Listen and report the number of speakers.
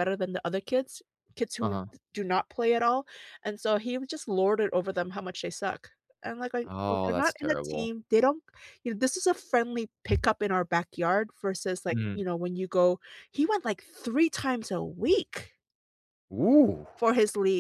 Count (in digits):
2